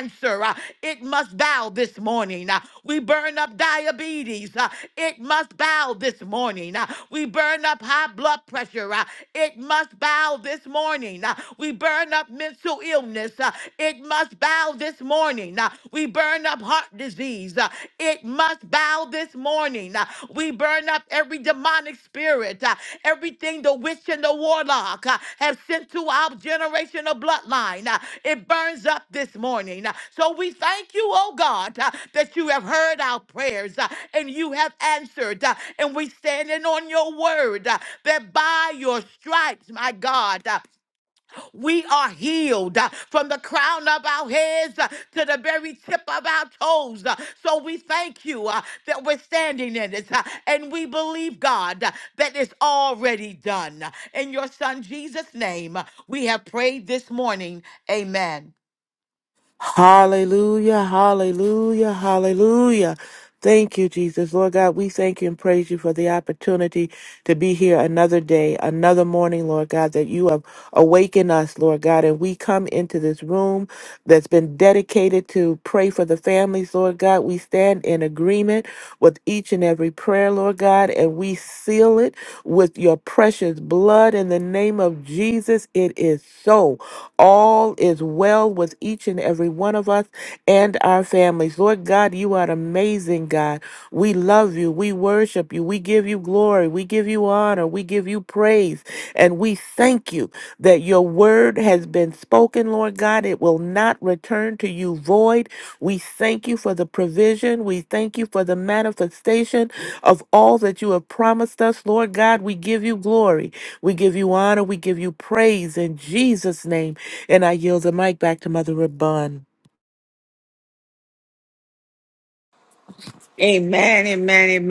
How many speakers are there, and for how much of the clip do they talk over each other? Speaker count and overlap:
3, no overlap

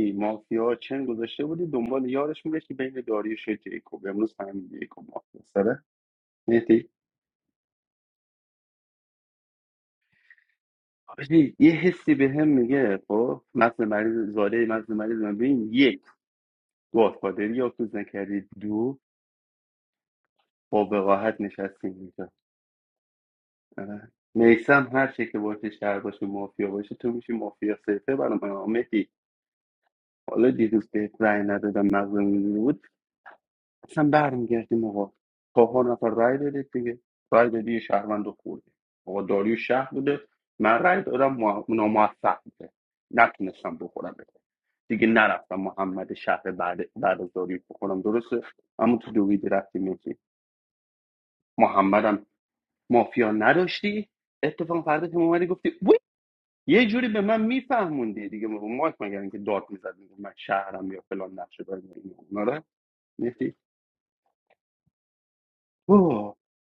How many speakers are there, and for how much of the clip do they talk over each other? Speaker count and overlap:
1, no overlap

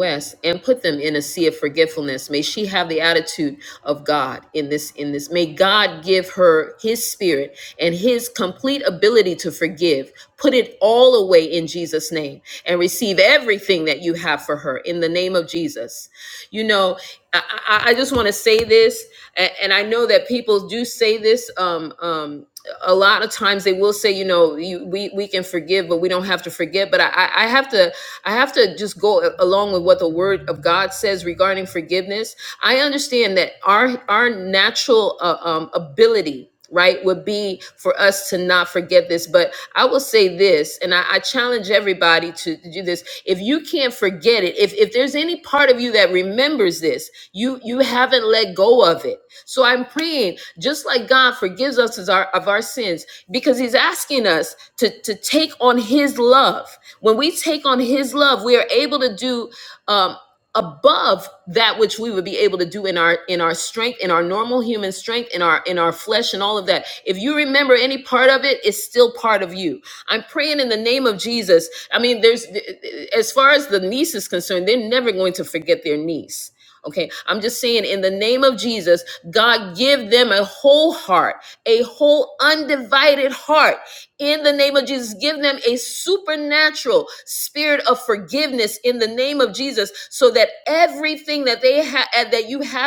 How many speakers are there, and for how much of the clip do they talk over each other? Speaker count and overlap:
1, no overlap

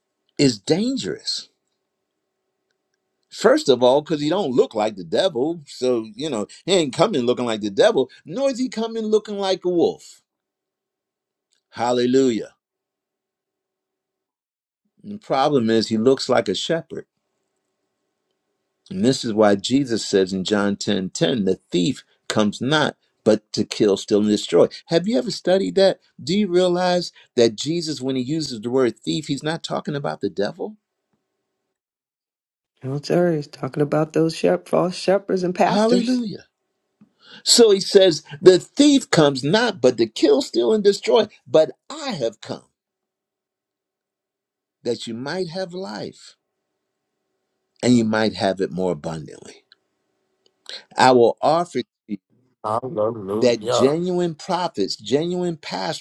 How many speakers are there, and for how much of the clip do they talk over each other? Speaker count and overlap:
3, about 1%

